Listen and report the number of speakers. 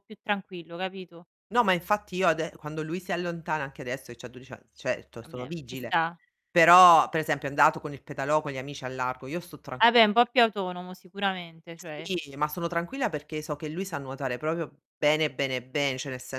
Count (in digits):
2